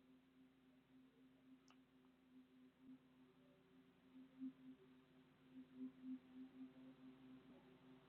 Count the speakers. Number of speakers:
0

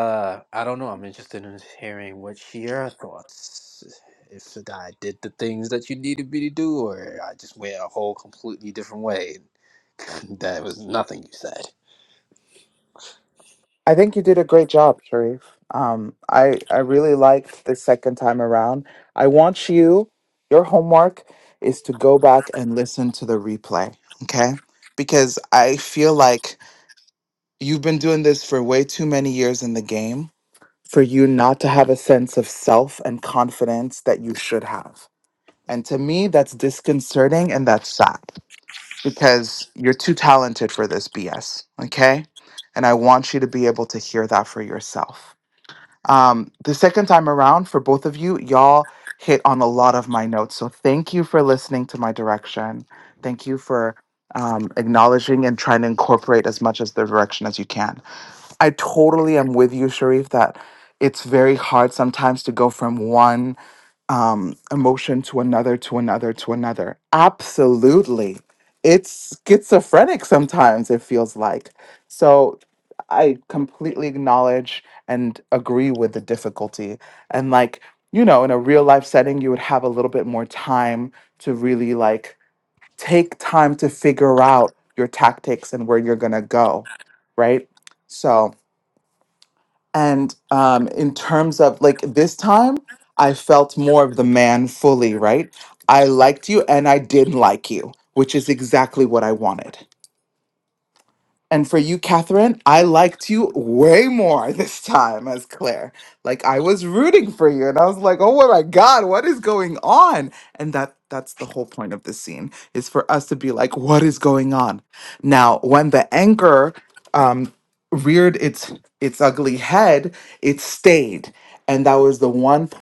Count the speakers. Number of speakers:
2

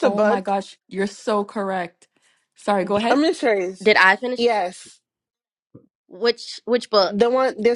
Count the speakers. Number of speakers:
3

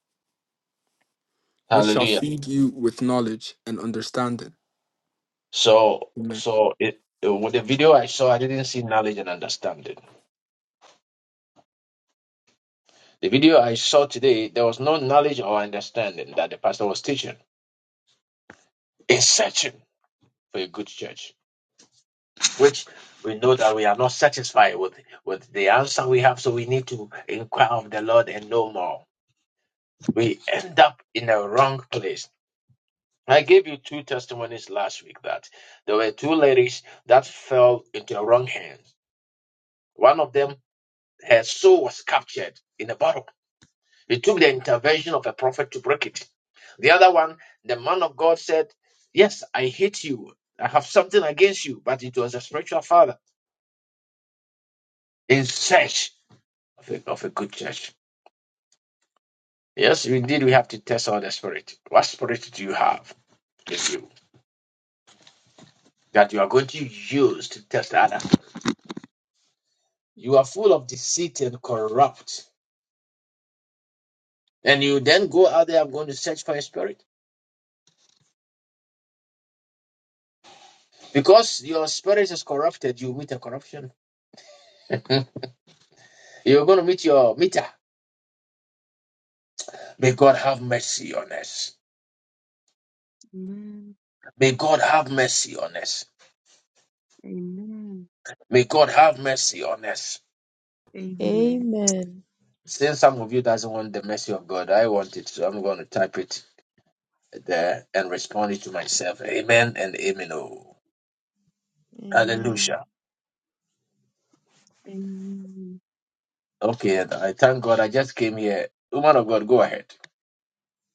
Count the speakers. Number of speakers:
4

